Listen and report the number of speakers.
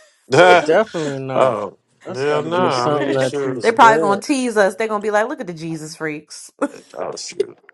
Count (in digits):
3